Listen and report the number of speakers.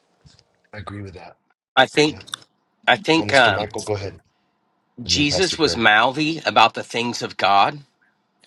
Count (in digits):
2